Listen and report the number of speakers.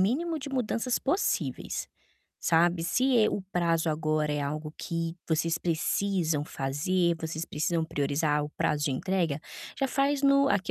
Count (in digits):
1